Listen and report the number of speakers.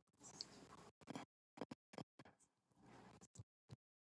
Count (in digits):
0